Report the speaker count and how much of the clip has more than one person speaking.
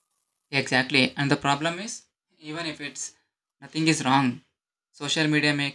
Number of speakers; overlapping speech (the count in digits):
1, no overlap